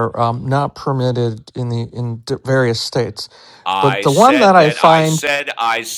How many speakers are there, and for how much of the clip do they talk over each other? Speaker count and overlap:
2, about 23%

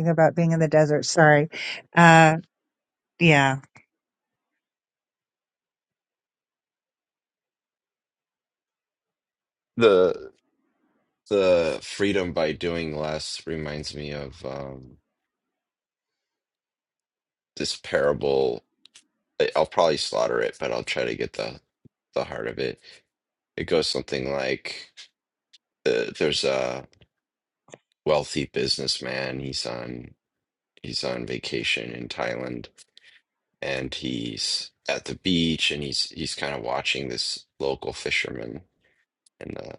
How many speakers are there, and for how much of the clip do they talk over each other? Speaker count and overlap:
2, no overlap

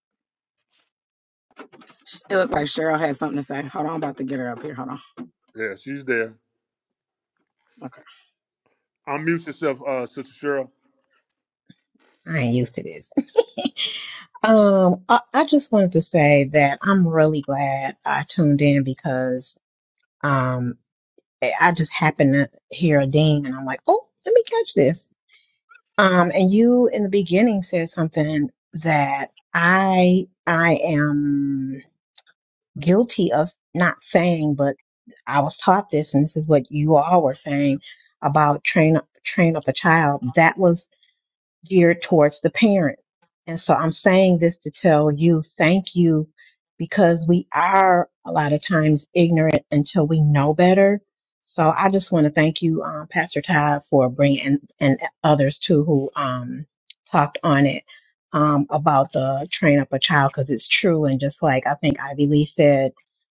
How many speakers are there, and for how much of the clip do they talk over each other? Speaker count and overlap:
3, no overlap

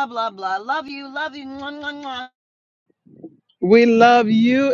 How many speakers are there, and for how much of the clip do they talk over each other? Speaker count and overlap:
2, no overlap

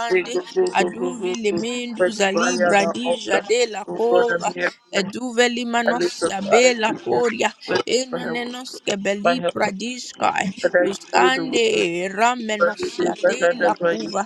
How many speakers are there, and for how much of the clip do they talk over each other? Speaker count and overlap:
2, about 46%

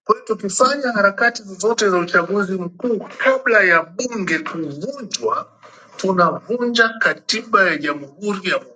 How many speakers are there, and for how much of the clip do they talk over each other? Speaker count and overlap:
1, no overlap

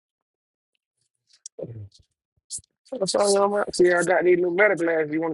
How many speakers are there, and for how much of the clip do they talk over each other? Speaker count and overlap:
1, no overlap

